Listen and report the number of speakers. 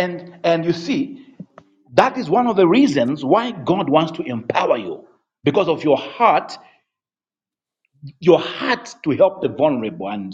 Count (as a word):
one